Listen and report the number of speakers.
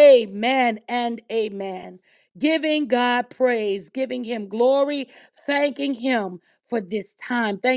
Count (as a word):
one